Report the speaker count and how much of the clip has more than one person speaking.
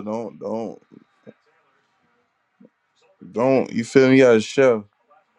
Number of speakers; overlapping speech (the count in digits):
1, no overlap